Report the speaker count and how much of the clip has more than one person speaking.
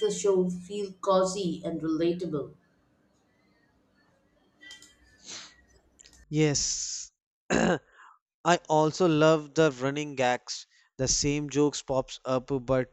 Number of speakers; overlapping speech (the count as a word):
two, no overlap